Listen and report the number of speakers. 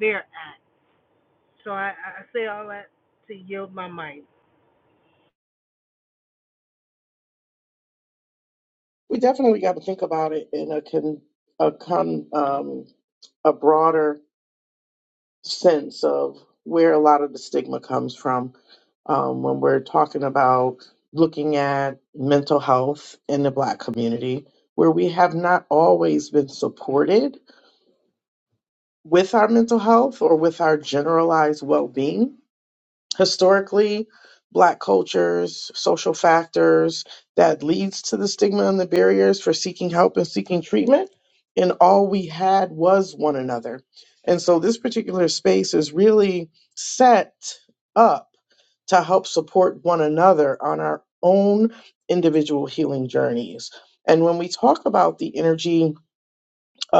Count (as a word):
two